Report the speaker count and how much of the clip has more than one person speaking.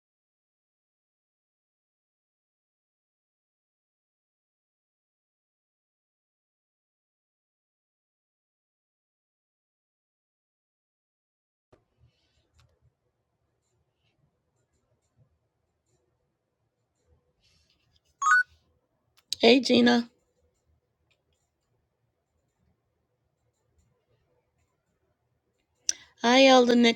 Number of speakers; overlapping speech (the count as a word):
one, no overlap